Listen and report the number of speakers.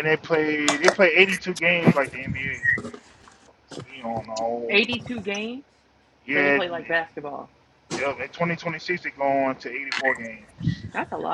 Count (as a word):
two